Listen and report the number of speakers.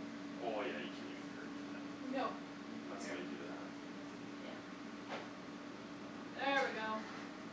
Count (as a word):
two